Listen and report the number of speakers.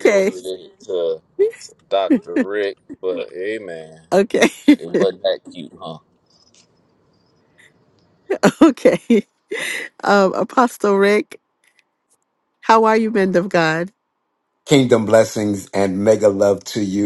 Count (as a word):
three